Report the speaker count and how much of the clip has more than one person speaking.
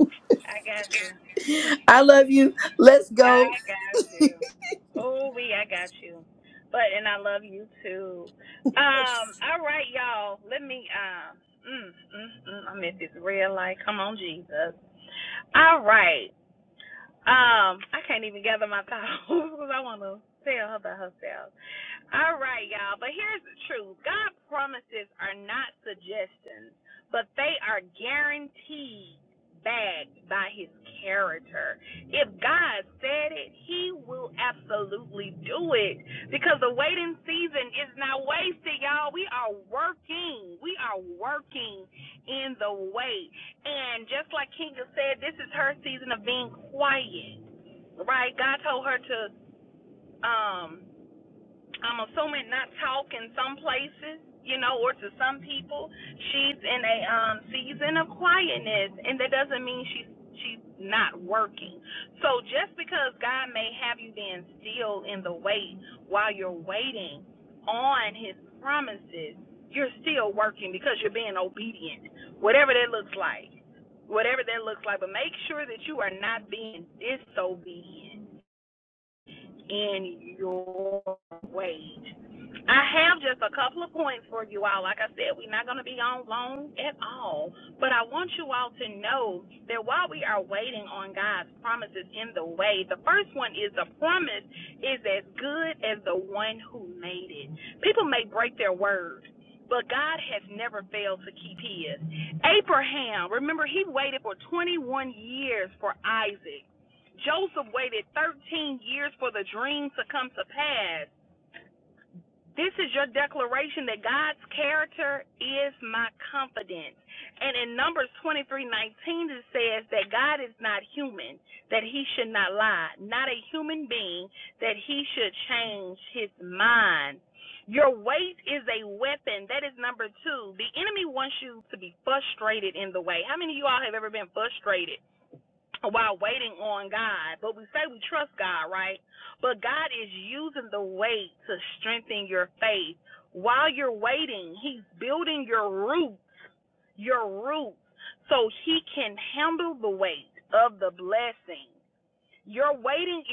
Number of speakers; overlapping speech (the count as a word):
two, under 1%